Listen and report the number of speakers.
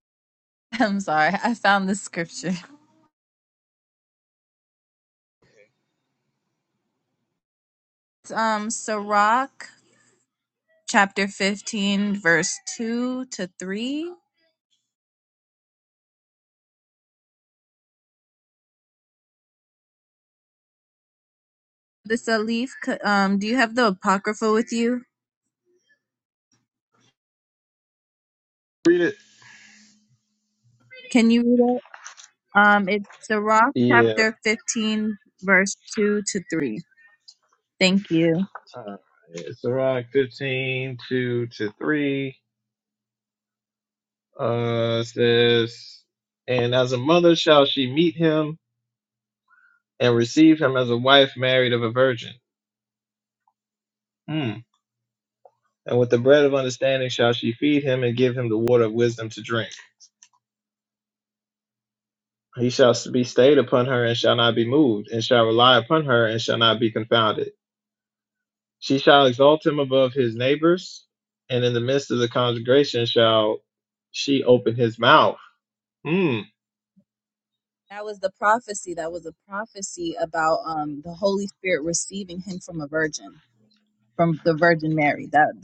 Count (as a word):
two